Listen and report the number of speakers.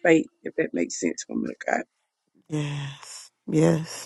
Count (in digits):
2